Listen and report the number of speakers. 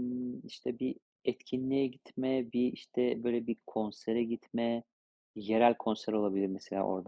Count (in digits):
1